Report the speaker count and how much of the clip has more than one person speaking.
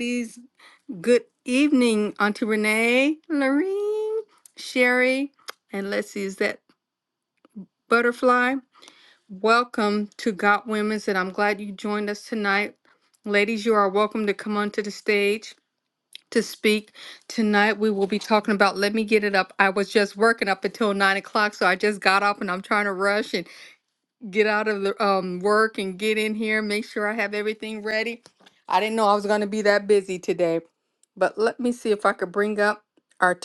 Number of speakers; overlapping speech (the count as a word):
one, no overlap